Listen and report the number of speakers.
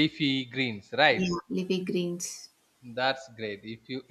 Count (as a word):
two